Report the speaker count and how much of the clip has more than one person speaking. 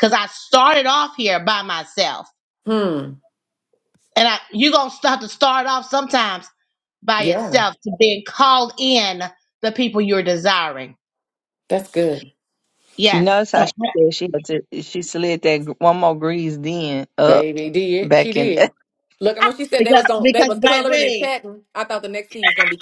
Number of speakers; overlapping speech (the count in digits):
3, about 14%